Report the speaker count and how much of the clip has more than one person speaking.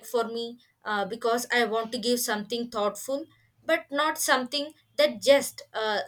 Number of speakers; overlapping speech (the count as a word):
one, no overlap